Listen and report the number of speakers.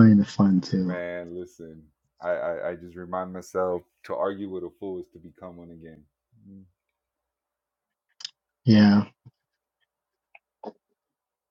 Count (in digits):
2